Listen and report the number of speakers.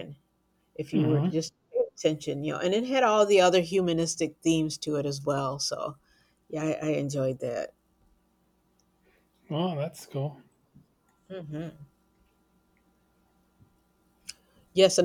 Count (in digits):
2